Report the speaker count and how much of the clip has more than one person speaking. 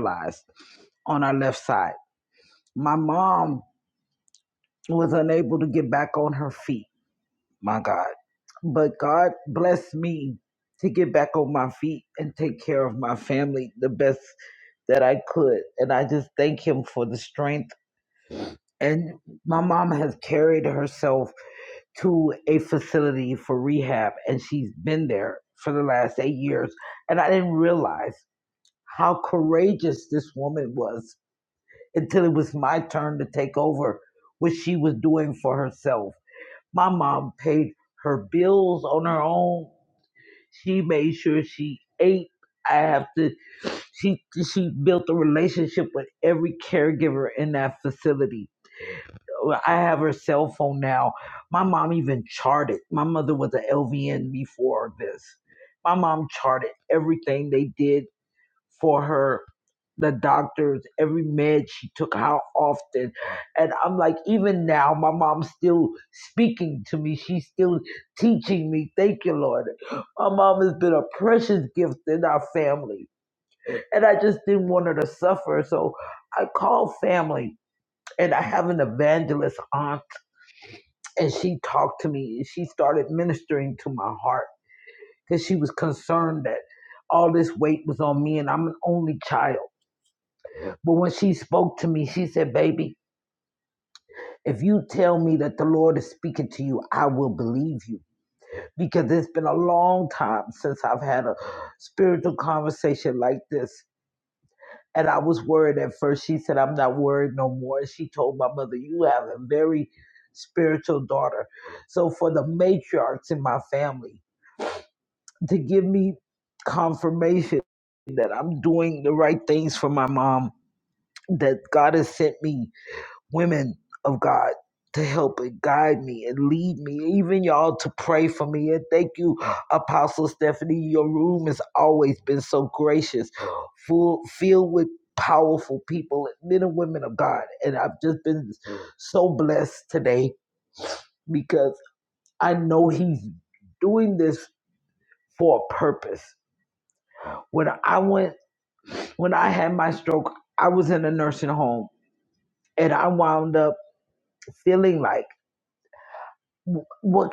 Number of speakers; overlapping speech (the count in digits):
1, no overlap